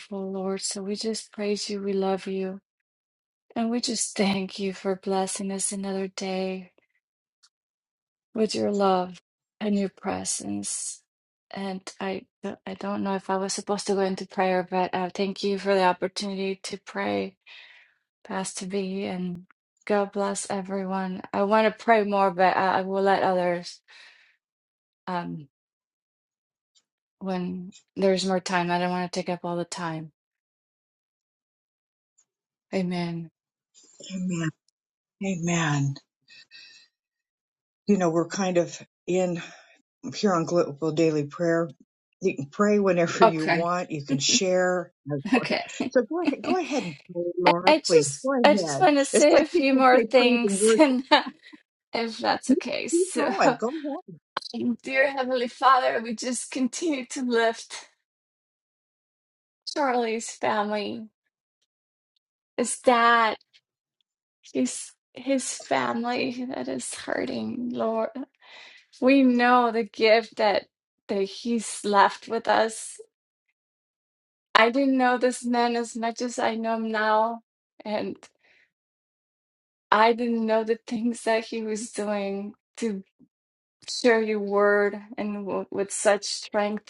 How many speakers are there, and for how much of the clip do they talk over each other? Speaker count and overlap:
two, about 5%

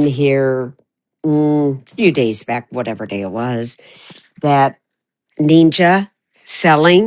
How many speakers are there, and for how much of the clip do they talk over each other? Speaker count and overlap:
one, no overlap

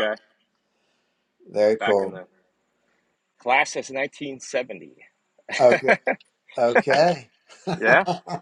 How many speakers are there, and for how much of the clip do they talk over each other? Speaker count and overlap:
two, about 4%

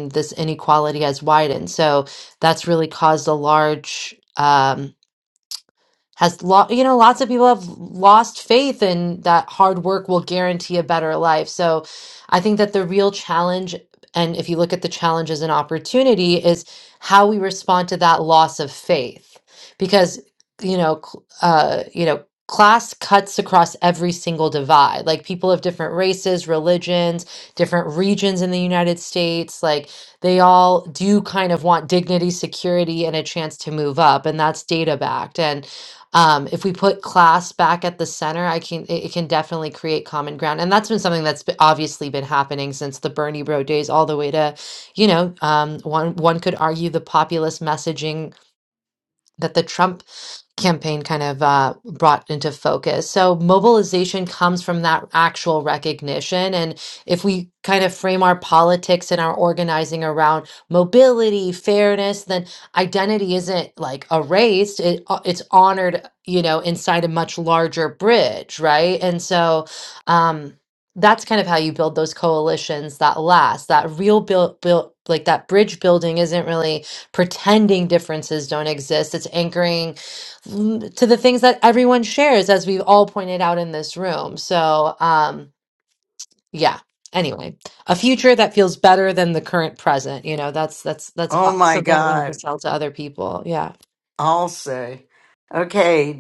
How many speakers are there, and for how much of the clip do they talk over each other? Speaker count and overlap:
two, about 1%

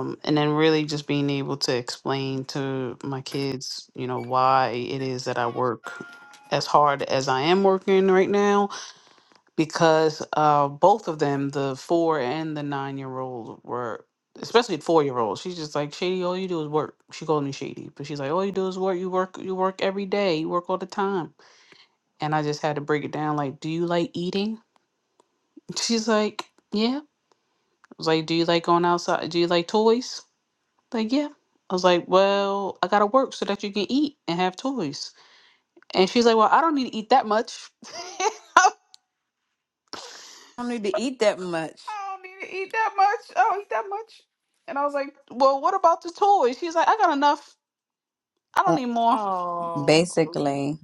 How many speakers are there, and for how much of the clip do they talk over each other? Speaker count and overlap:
three, about 1%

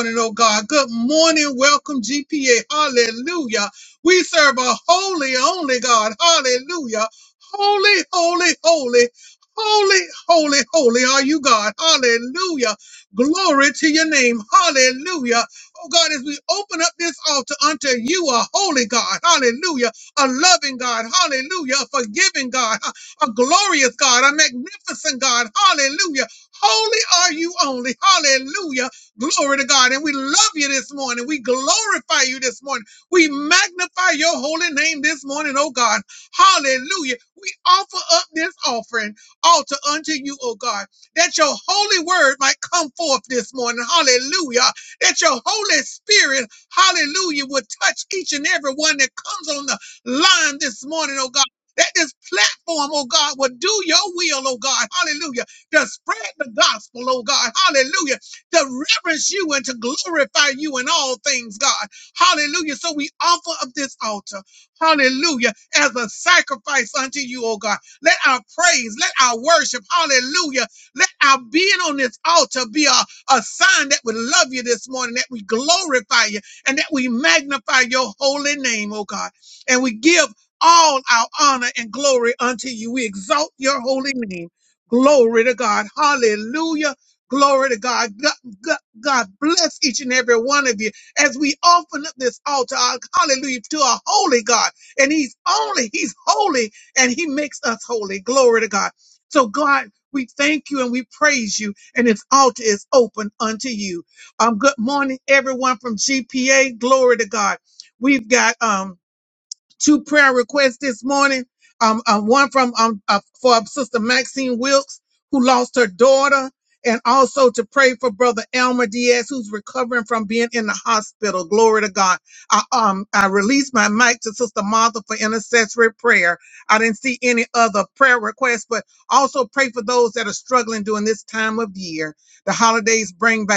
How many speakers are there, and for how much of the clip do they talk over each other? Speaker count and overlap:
one, no overlap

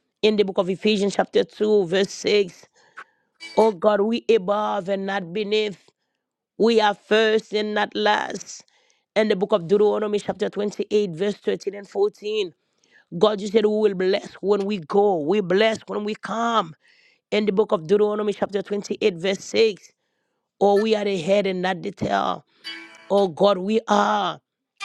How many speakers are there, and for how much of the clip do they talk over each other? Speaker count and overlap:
one, no overlap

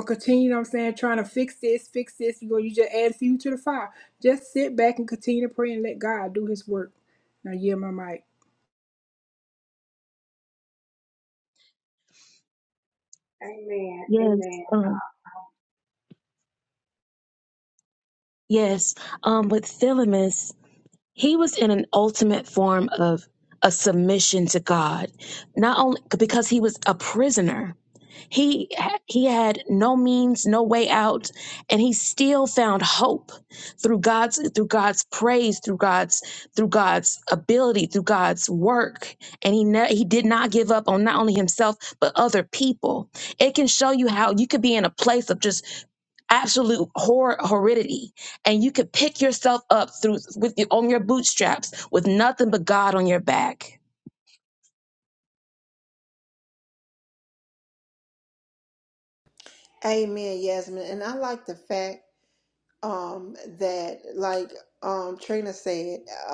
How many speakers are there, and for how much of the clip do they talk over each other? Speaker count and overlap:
four, about 1%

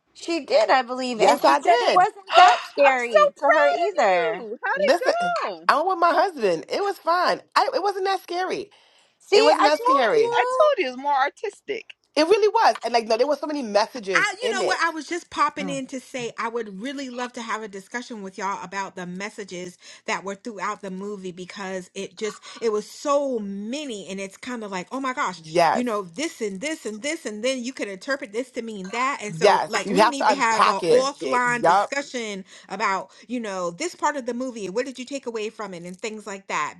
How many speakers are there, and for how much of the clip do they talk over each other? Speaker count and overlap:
four, about 20%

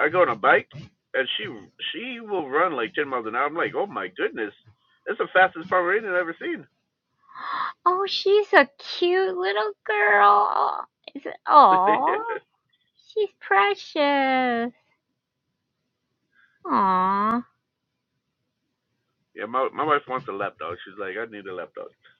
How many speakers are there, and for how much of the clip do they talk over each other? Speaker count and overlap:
two, no overlap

